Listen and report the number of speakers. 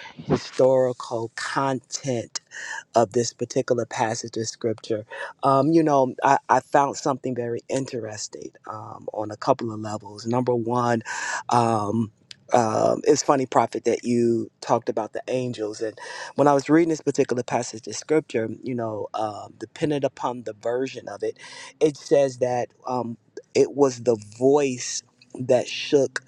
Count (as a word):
one